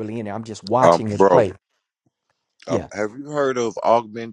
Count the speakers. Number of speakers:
two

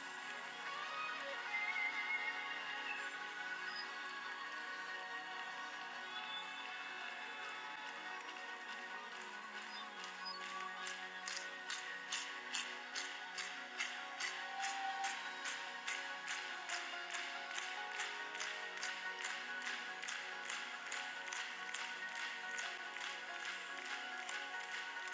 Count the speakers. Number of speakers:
zero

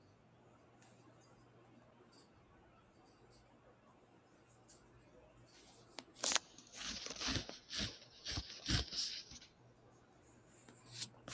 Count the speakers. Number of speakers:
zero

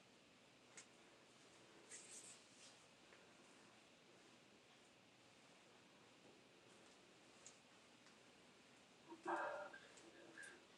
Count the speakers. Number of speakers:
zero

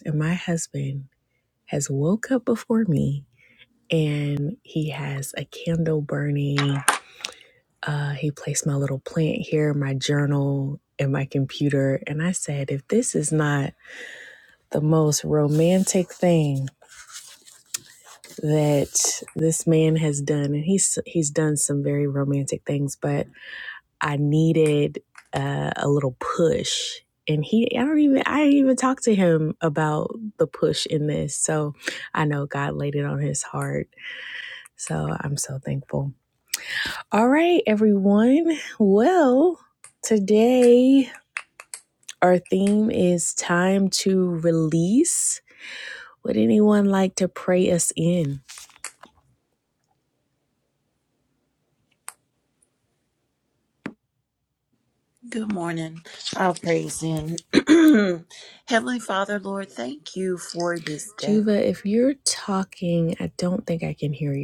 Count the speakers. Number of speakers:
two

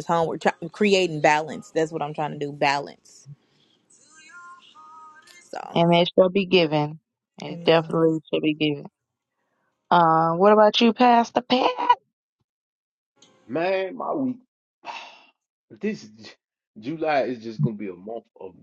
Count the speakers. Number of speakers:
three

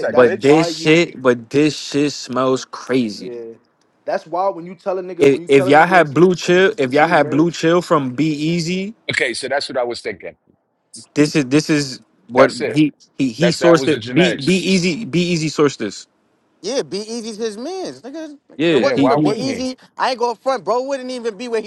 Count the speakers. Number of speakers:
four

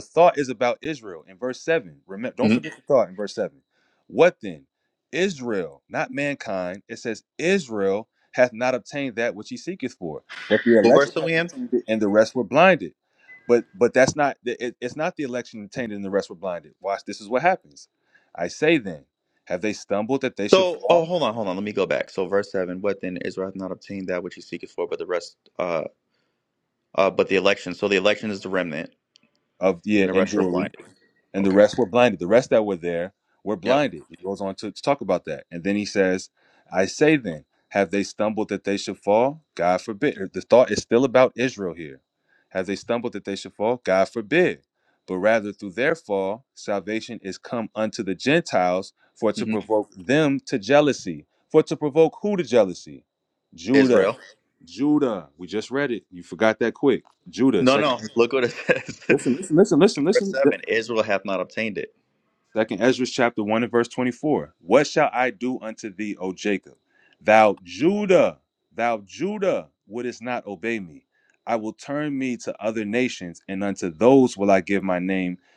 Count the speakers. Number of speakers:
two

